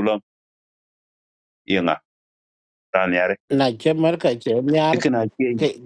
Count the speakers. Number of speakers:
two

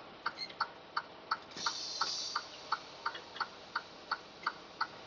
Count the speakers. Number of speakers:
zero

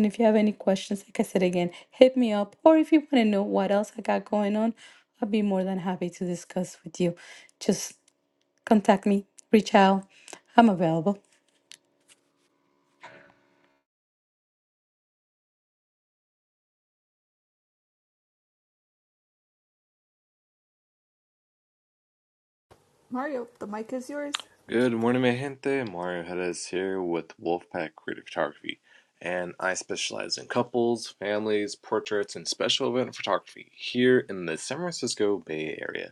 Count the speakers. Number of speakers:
three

